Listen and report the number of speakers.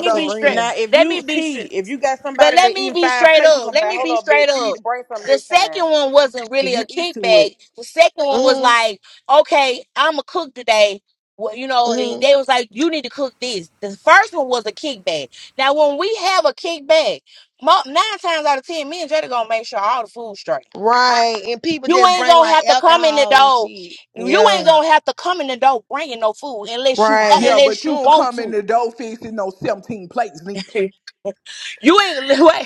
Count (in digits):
4